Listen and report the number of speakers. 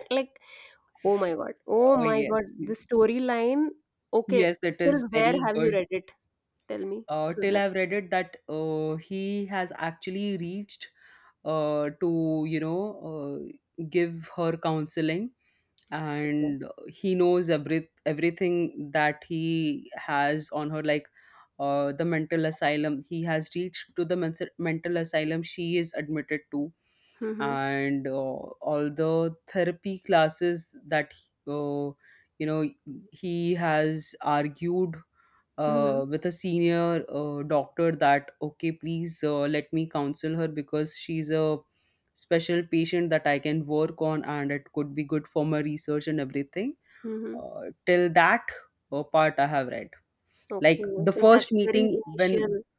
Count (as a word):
two